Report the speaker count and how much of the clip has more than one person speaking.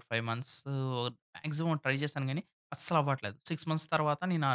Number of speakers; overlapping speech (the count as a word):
one, no overlap